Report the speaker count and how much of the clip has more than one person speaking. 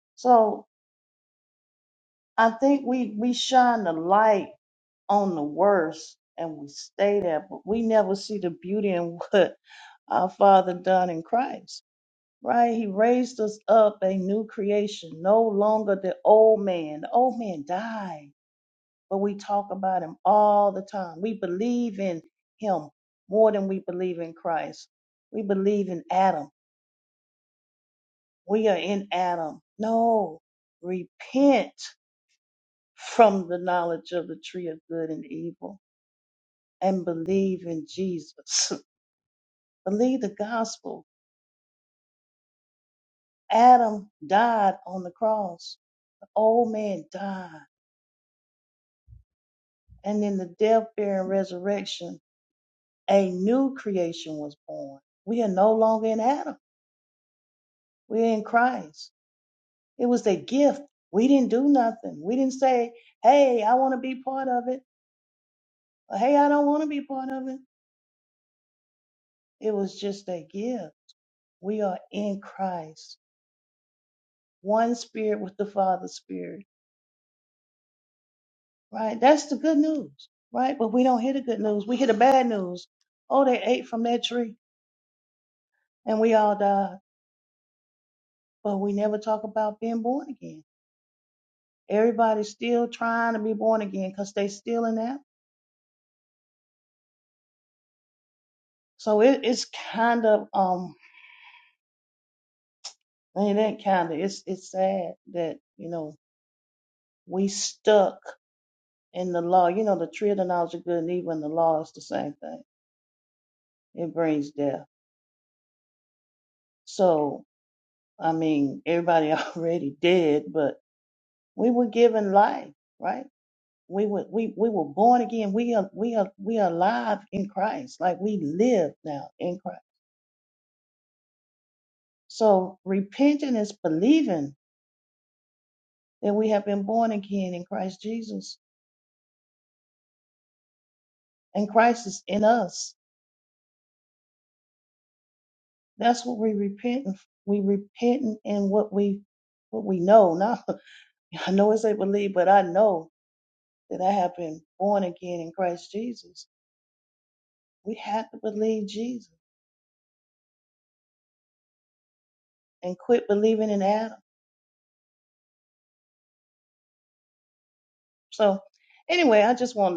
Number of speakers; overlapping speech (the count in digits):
1, no overlap